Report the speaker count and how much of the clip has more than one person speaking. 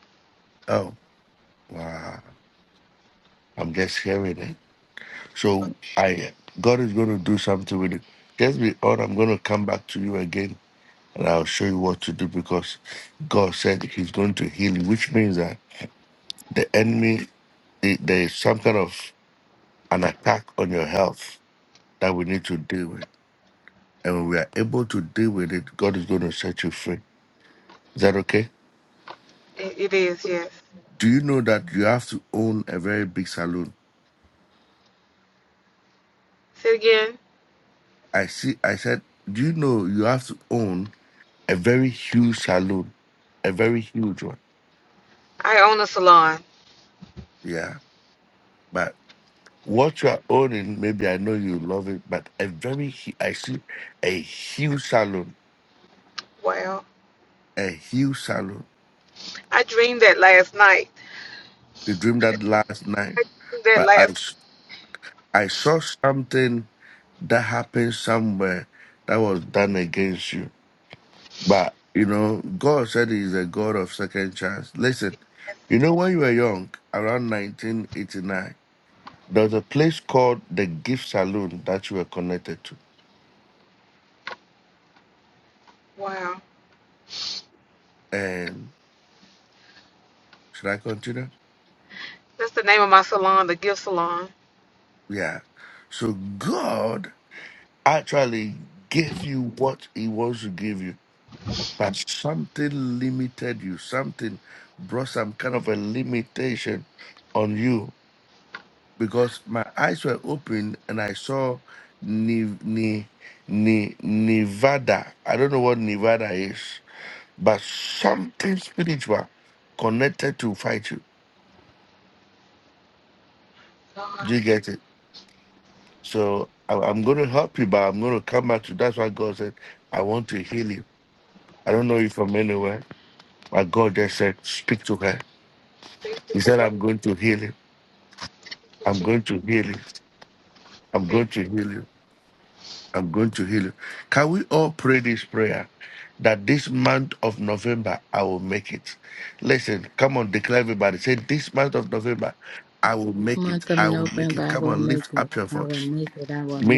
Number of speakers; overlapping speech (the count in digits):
3, about 2%